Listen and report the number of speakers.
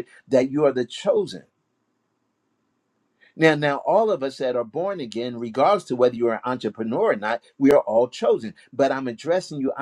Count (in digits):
1